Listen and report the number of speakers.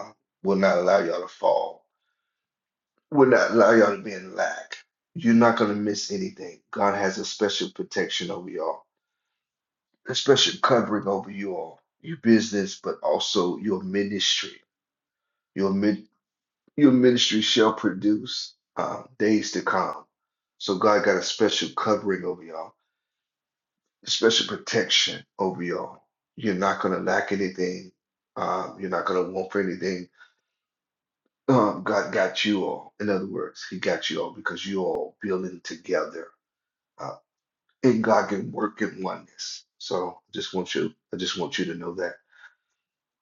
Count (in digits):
1